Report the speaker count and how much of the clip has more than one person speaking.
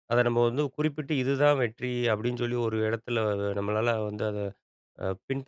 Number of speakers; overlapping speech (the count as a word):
one, no overlap